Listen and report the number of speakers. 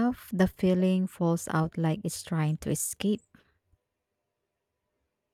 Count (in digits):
1